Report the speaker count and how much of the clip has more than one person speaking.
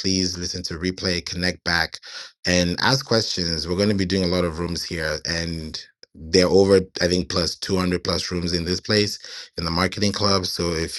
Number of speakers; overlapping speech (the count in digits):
1, no overlap